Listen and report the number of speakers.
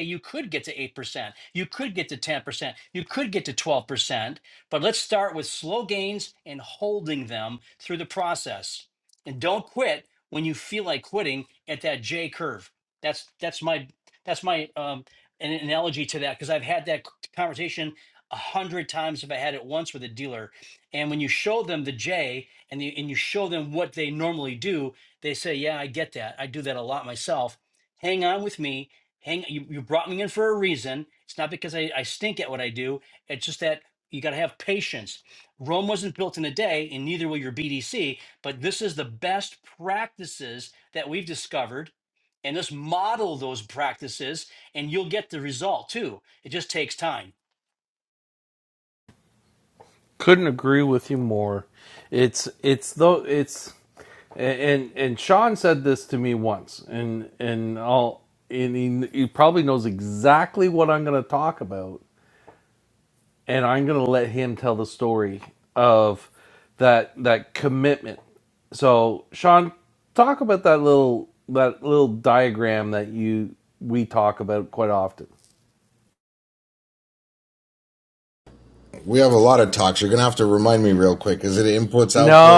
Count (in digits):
3